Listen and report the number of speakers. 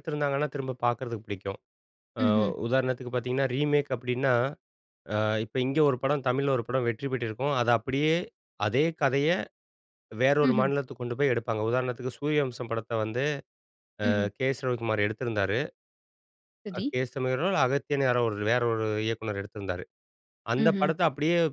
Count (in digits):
2